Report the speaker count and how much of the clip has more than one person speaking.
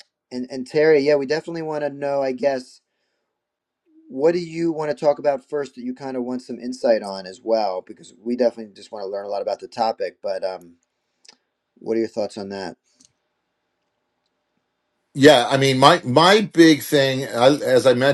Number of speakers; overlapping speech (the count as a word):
two, no overlap